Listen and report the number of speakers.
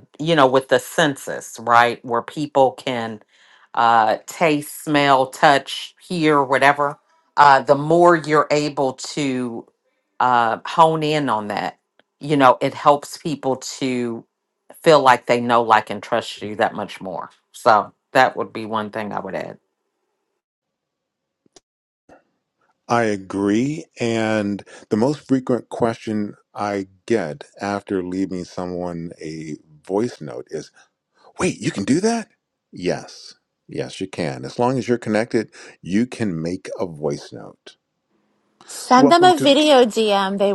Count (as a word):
three